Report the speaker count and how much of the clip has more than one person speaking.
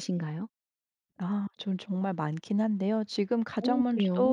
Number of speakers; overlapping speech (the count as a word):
two, about 17%